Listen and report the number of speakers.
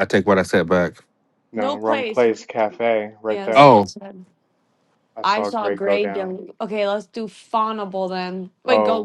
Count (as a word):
three